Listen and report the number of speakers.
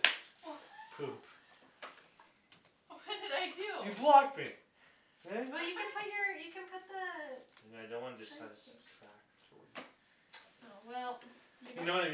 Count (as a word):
three